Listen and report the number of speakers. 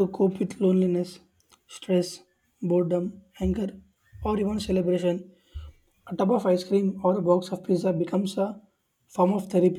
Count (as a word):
one